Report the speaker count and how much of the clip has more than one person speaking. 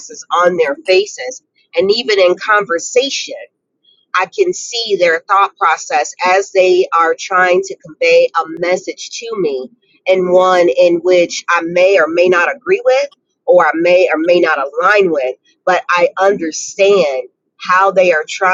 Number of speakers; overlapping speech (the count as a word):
one, no overlap